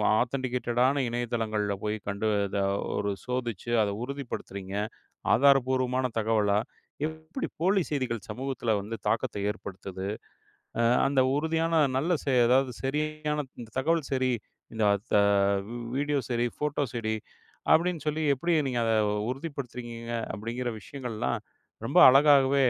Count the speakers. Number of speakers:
1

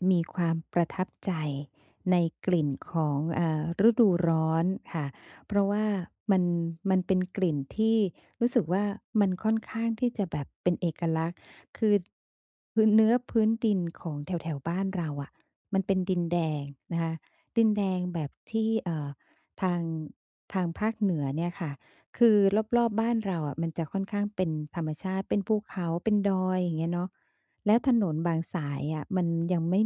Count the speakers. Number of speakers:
1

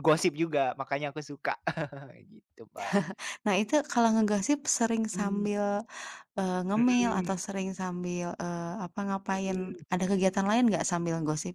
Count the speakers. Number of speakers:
2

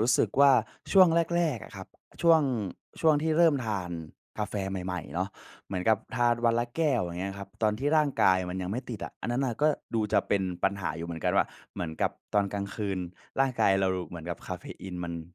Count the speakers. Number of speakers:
1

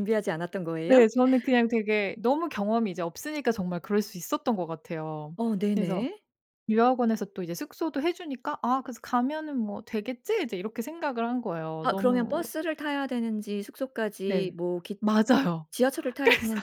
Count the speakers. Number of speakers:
2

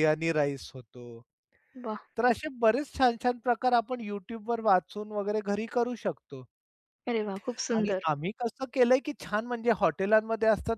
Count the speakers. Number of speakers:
2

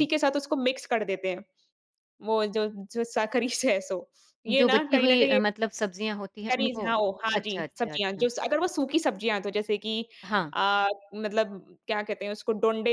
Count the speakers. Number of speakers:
2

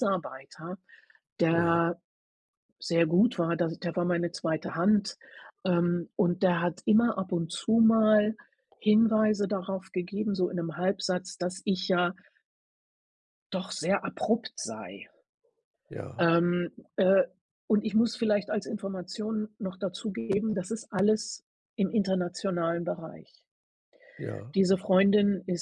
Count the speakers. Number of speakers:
2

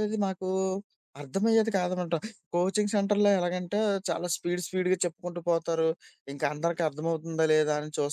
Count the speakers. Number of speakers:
1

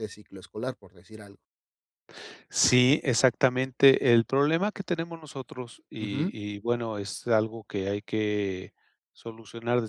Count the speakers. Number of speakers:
2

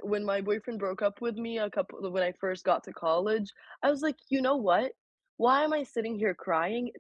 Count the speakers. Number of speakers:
1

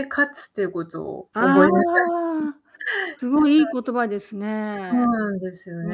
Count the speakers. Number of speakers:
2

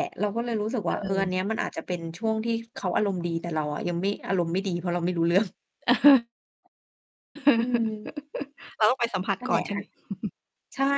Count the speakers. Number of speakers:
2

